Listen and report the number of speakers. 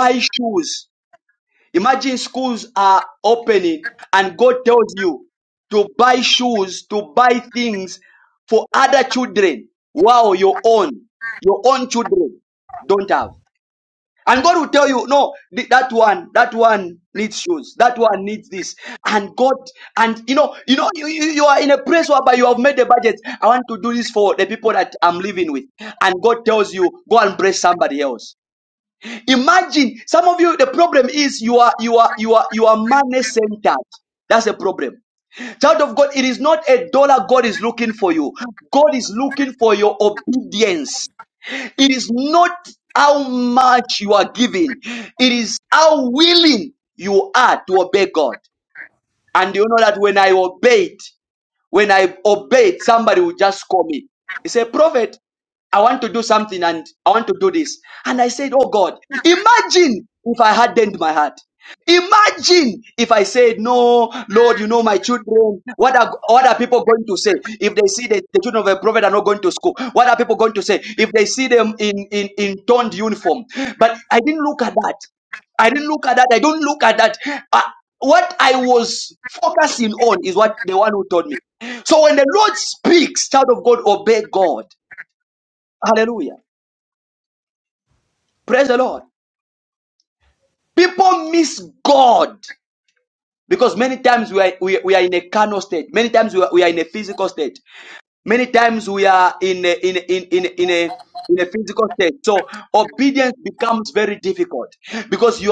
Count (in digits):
1